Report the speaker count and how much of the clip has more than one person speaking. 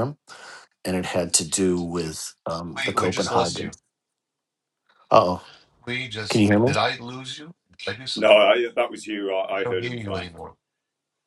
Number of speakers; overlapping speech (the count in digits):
3, about 20%